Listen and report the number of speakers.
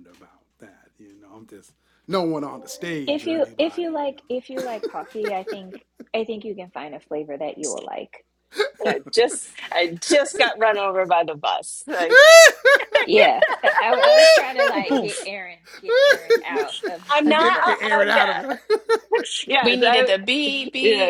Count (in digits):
4